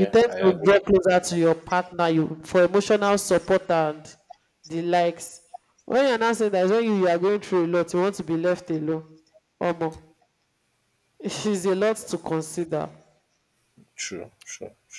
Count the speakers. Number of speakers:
two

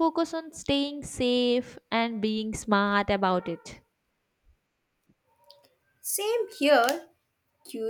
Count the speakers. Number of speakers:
two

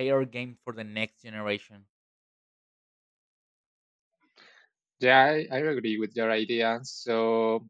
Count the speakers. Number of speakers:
two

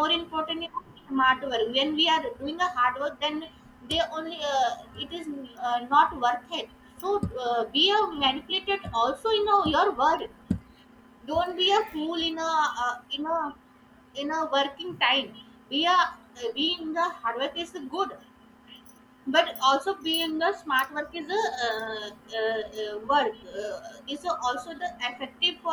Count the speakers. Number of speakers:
one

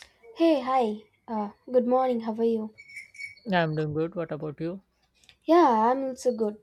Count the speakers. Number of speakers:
two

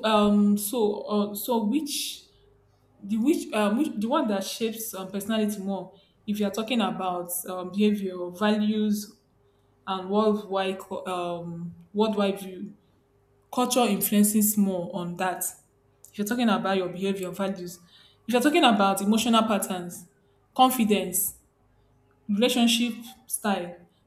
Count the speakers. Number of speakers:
one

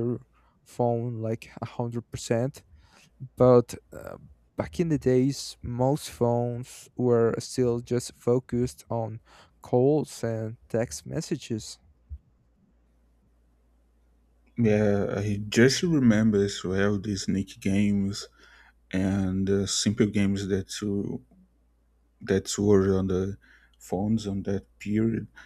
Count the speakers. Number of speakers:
two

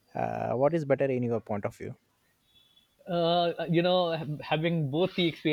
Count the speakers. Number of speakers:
two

